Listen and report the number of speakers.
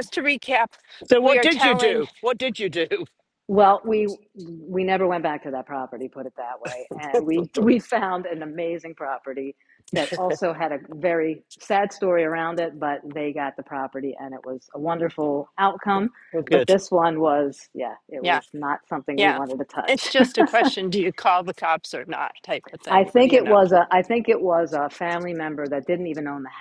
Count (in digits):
3